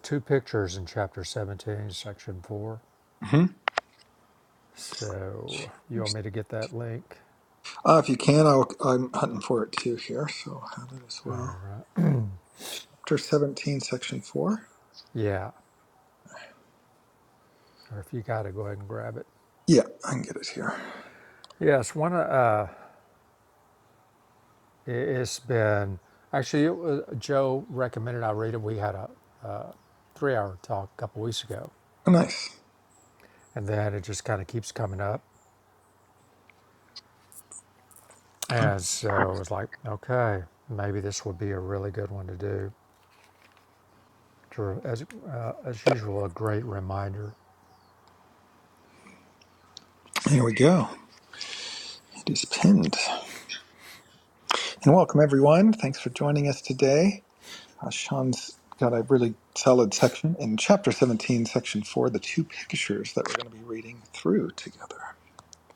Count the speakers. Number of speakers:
2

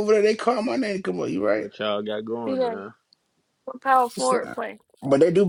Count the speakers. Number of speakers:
3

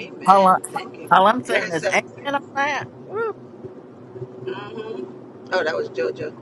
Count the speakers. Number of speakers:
2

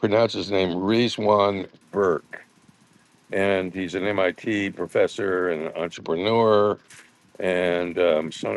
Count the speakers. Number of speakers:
1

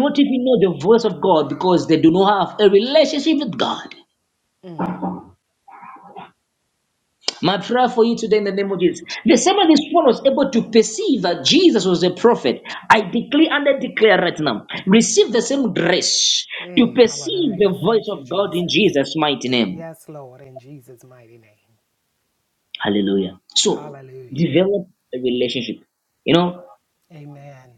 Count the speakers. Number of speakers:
2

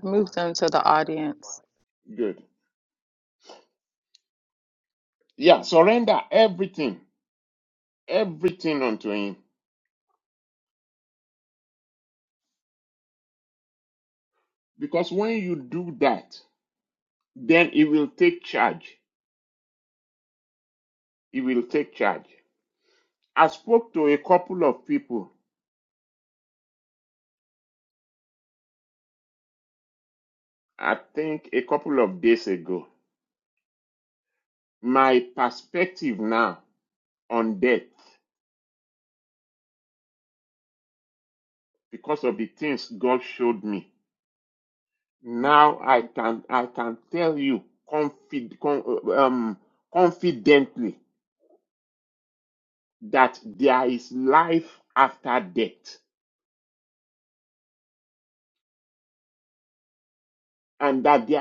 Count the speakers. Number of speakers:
2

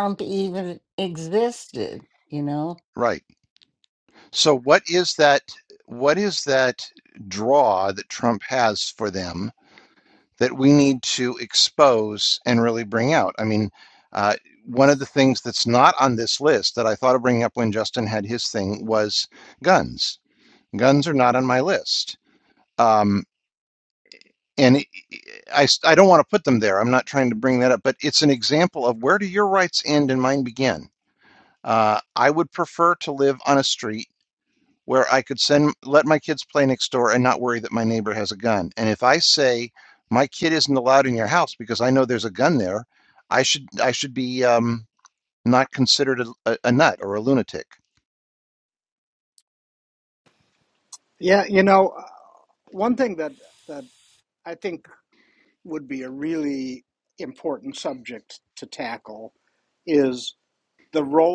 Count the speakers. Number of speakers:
3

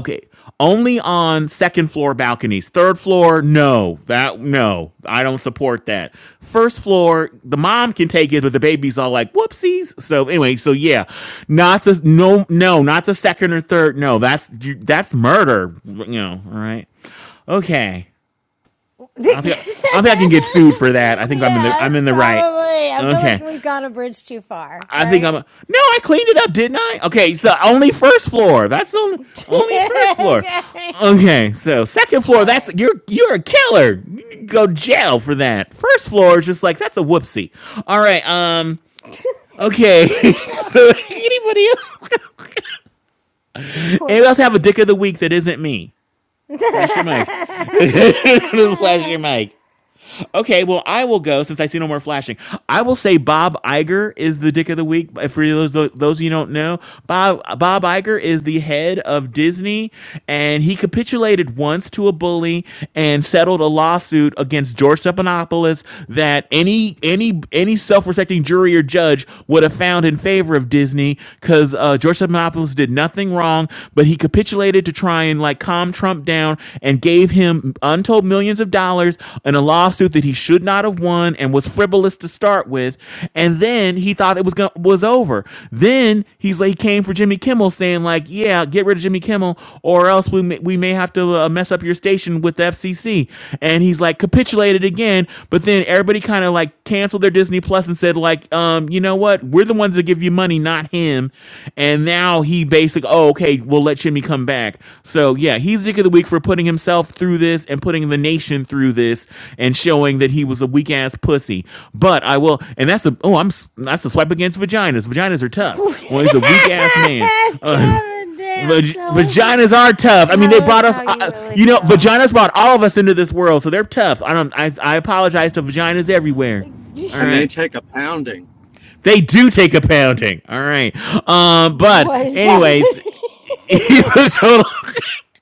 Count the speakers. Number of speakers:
3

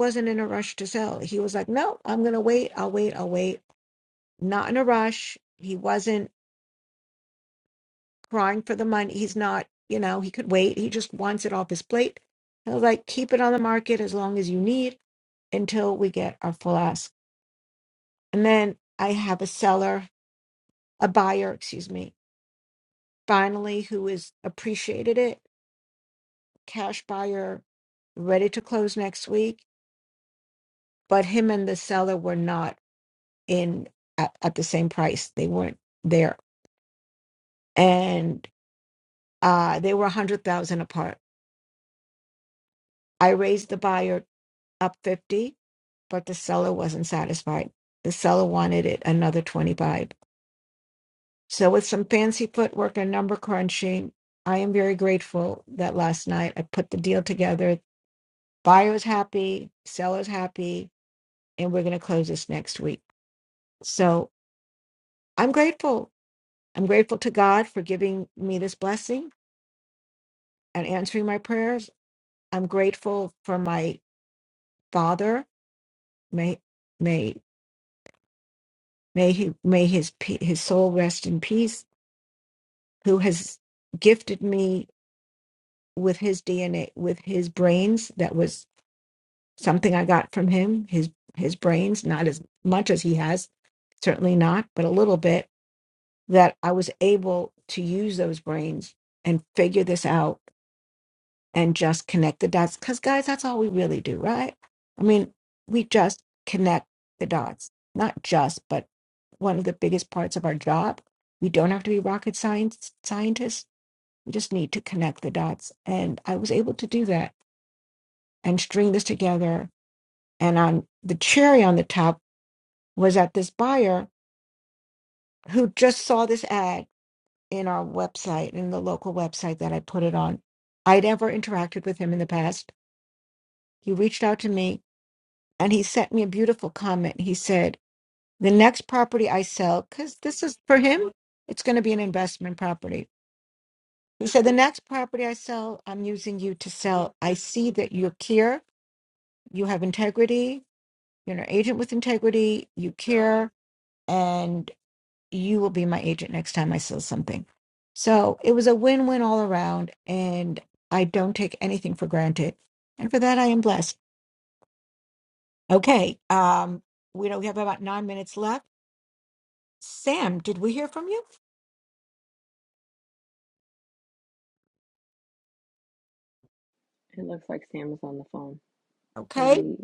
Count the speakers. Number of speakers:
2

